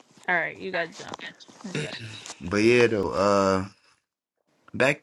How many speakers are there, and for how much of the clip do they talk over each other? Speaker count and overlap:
2, no overlap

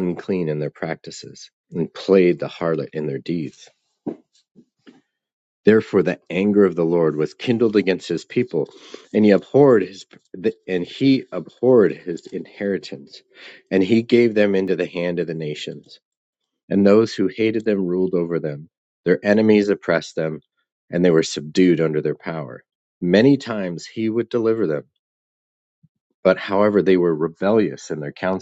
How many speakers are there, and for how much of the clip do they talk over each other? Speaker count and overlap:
1, no overlap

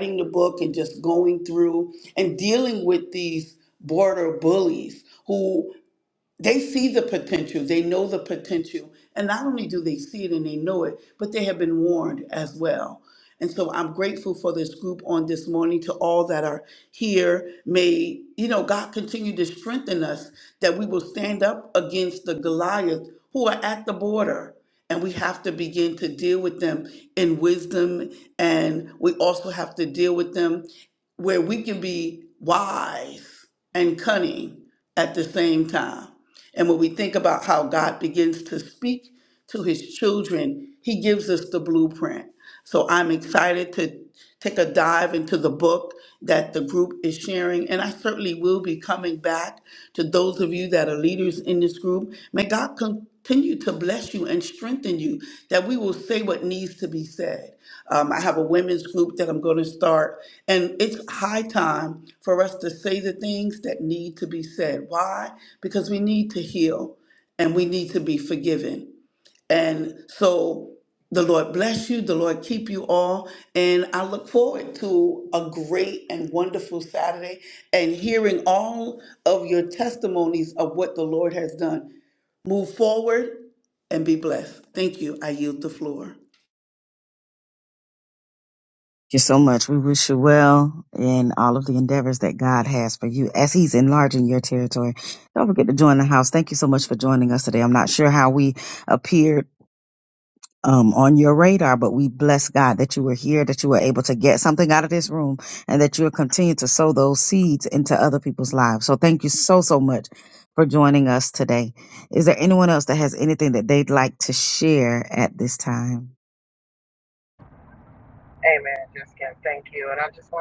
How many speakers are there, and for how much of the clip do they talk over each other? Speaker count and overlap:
3, no overlap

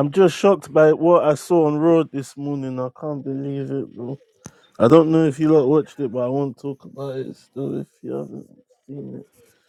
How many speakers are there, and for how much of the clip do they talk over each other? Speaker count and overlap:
1, no overlap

